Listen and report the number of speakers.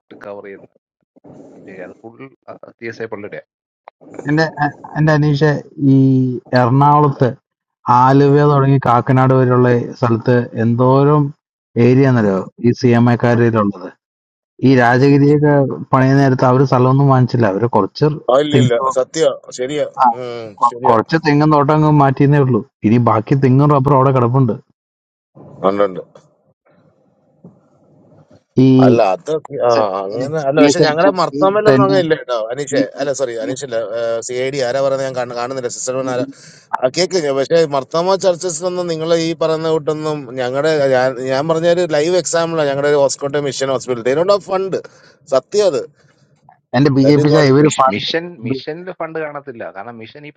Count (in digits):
3